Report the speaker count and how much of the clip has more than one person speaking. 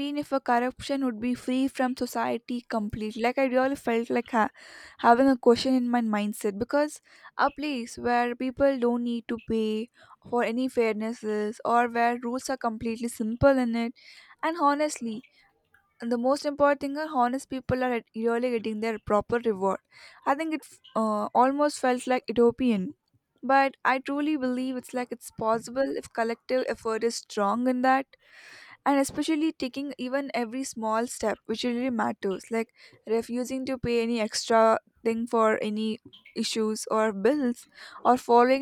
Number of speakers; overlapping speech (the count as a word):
one, no overlap